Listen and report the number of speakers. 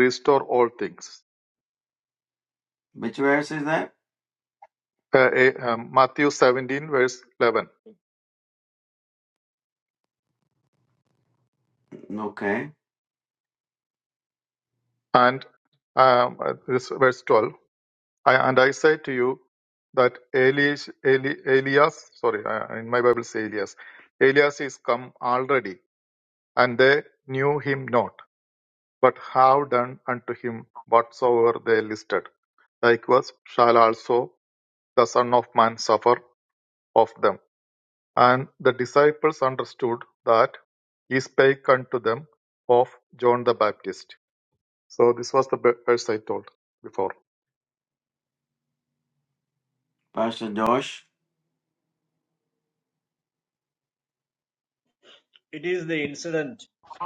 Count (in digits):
3